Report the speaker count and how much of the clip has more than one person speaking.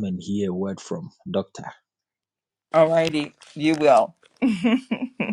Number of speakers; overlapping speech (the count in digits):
2, no overlap